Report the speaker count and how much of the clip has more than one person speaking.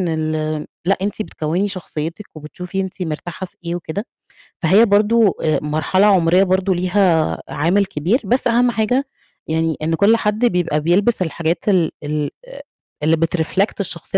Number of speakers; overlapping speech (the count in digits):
1, no overlap